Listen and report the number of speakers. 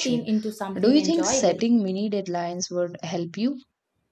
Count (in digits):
2